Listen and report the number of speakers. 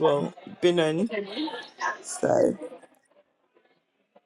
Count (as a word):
one